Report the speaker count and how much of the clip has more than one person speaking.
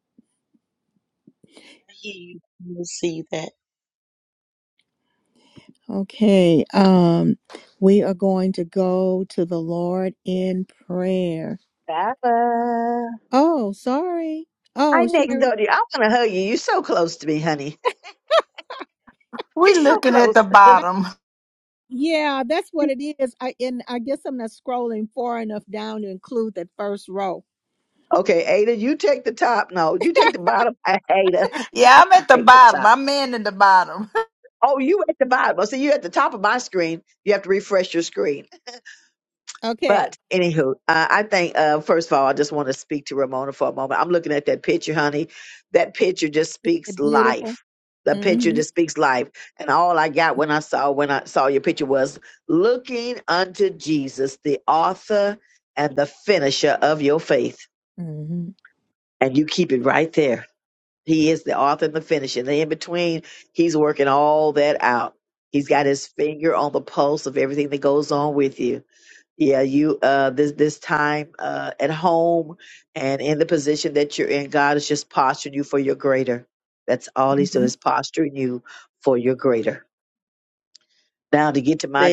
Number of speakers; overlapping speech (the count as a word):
four, about 5%